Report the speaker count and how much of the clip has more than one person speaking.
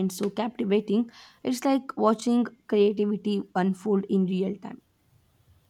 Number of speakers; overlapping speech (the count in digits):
1, no overlap